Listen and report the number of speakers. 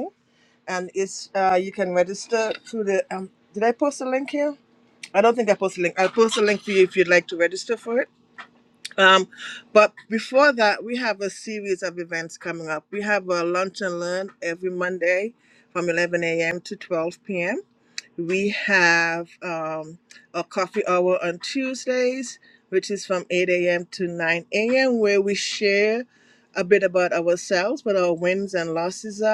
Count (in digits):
1